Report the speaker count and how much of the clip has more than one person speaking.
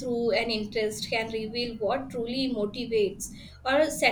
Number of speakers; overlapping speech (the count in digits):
1, no overlap